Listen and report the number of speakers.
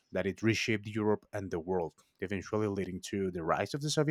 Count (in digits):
1